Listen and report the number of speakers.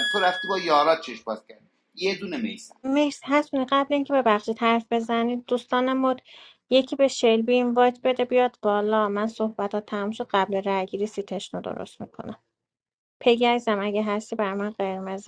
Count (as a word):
two